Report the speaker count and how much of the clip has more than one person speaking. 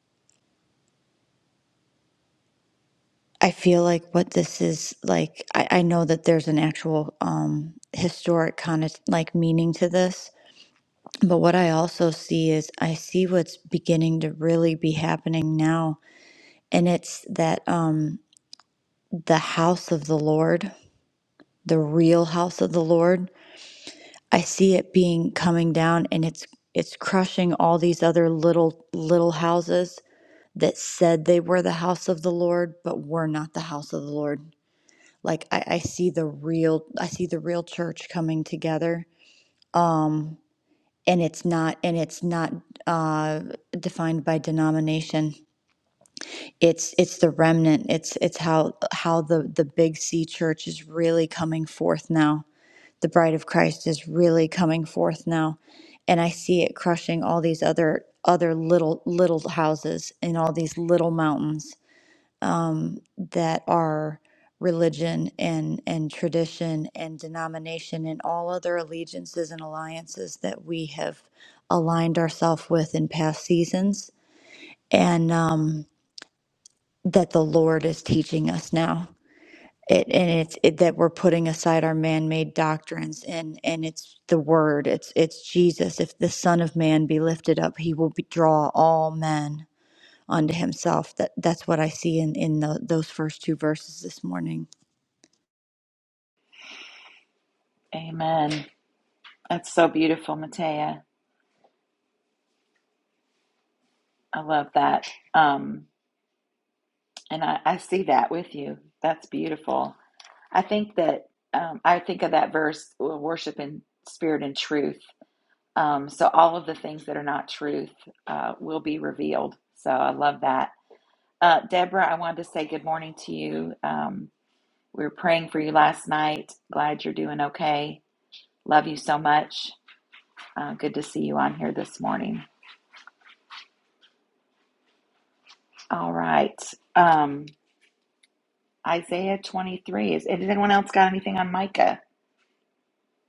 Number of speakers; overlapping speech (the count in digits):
2, no overlap